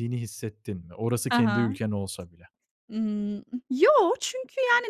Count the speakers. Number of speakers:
two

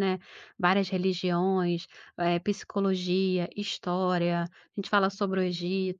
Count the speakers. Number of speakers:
one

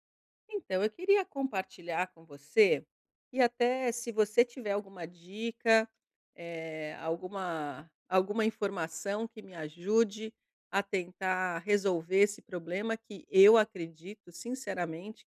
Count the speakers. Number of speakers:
one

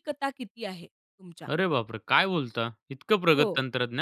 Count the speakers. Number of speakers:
two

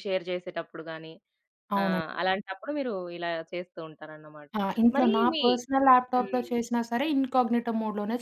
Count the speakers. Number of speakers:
two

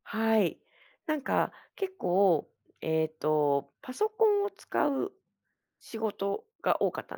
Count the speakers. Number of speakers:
one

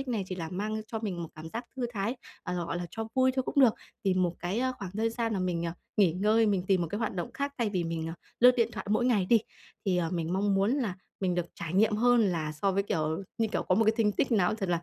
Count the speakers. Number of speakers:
one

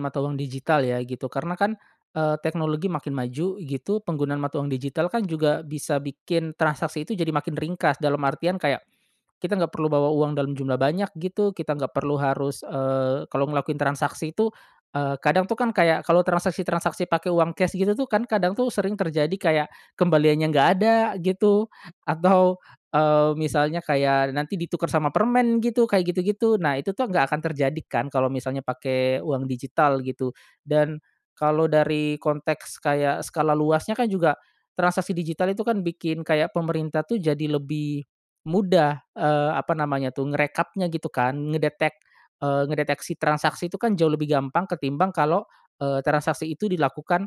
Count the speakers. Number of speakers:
one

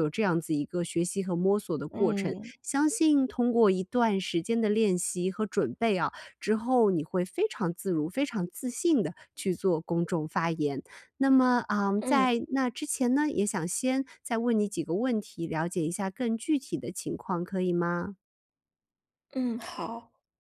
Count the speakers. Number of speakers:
two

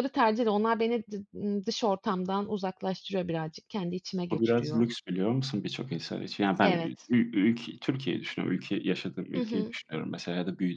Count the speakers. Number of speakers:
two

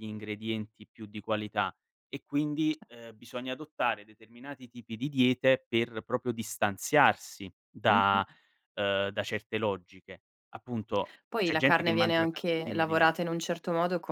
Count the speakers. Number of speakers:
two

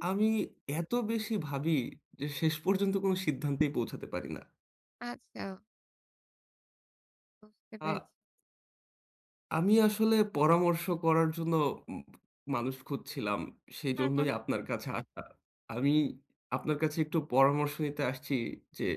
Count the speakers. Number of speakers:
two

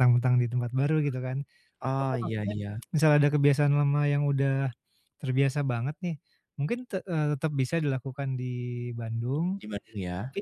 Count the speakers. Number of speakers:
two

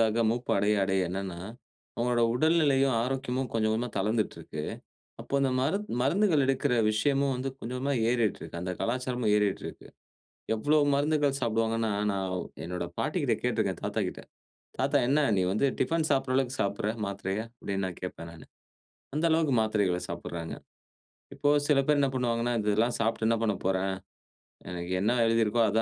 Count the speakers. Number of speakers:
one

